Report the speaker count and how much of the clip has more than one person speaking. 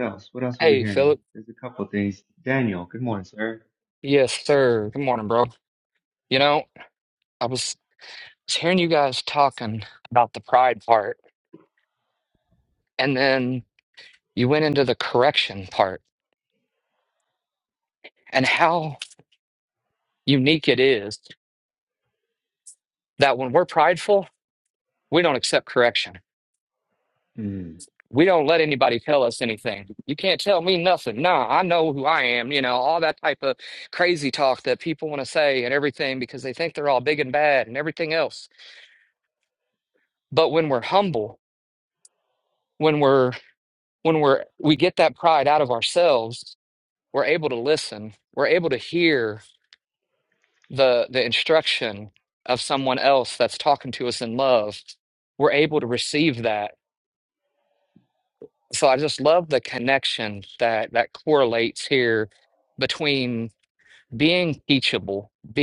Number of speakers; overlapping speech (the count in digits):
2, about 1%